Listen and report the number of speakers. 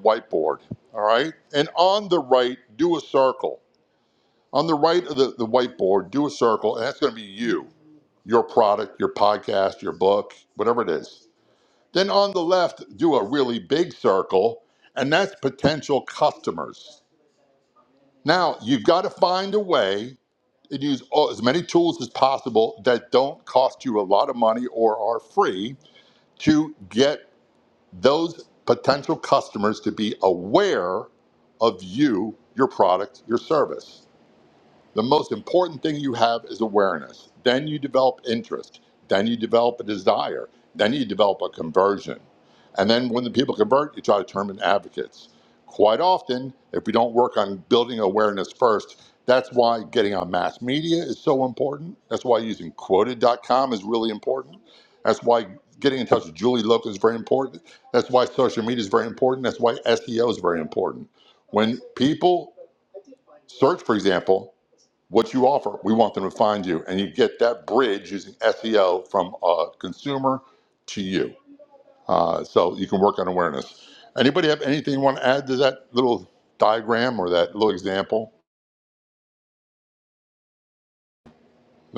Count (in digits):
1